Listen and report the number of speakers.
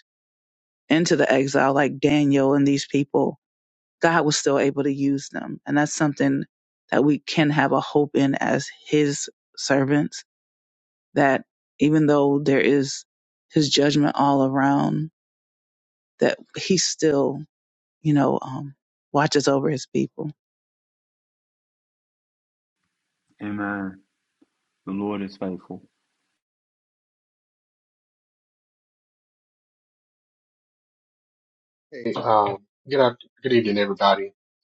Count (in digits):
3